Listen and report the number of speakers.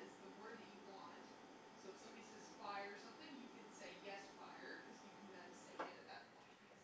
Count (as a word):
one